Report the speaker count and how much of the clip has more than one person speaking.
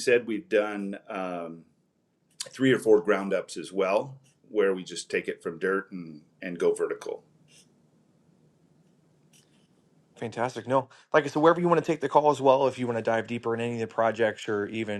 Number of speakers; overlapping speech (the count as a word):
two, no overlap